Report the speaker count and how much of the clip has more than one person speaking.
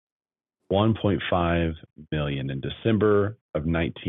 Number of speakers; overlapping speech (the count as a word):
one, no overlap